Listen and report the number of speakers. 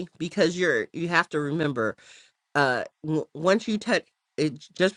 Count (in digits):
1